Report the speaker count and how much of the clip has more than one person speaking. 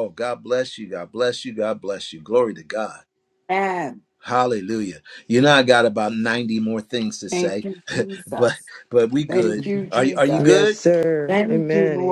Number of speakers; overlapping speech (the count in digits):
3, about 23%